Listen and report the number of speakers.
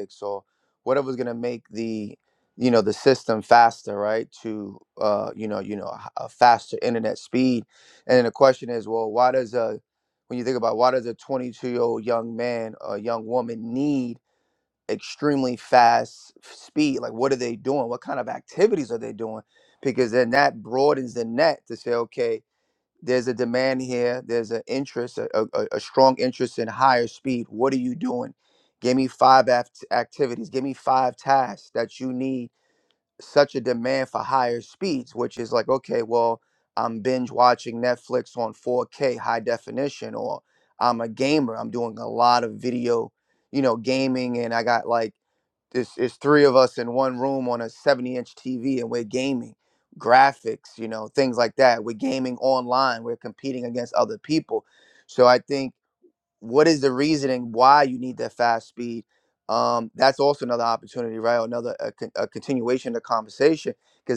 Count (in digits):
1